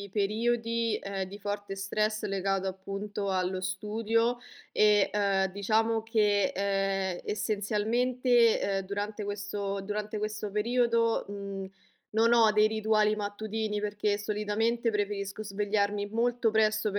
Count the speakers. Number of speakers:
one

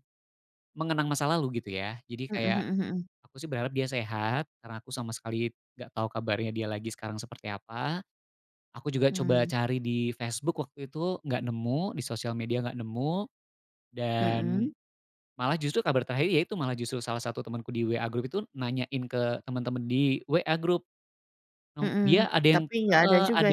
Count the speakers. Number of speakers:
two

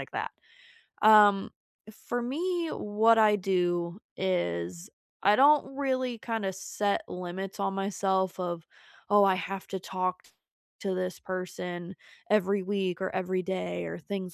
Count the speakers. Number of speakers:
one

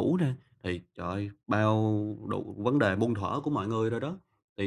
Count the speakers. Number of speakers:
one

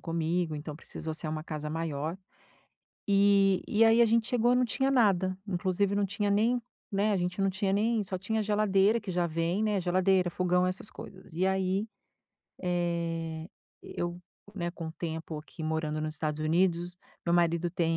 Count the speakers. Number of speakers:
one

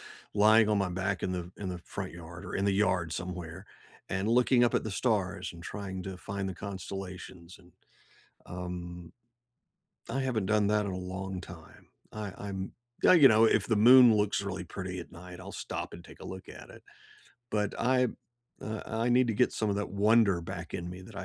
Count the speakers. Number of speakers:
one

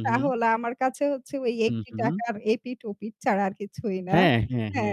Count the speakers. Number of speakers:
two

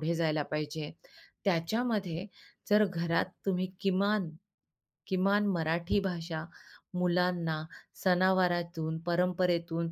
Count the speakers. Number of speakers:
one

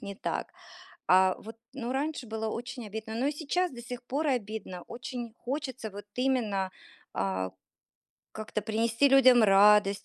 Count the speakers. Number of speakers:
one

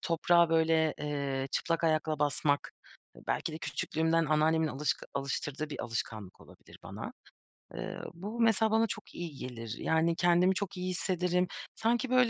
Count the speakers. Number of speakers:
one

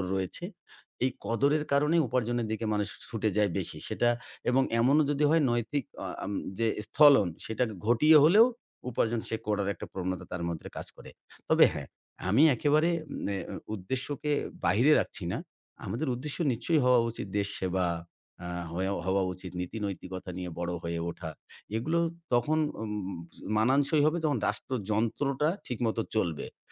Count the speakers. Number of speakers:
one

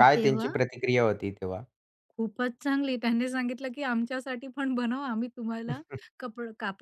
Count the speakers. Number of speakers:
two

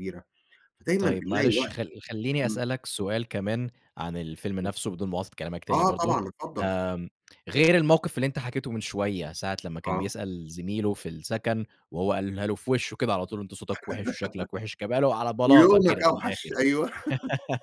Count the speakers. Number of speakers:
two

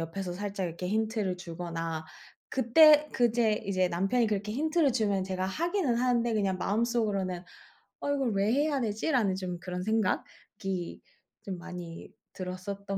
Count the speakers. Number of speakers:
one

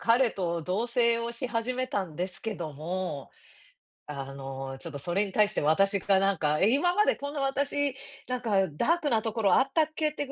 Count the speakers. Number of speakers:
one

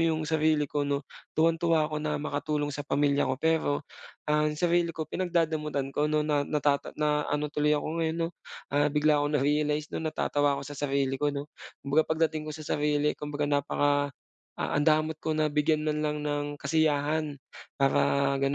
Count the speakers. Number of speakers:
one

